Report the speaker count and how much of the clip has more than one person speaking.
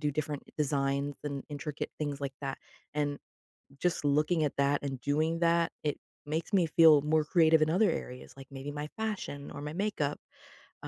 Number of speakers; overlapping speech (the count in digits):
1, no overlap